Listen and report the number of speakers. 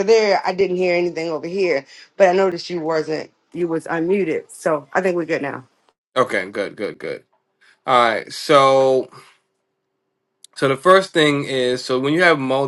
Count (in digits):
2